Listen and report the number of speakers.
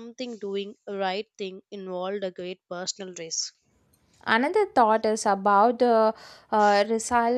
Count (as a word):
two